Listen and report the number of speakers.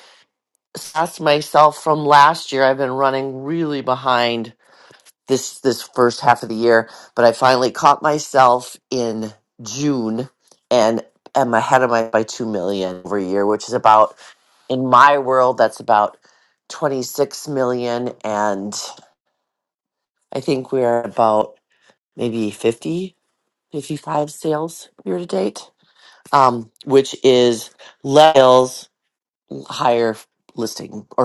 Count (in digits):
1